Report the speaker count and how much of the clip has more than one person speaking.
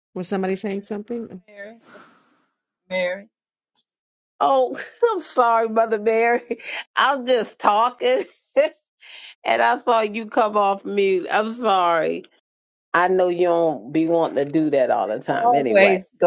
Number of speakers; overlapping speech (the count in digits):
3, about 4%